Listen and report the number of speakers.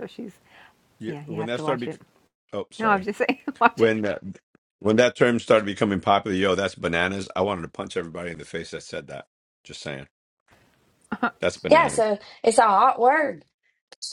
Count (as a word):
three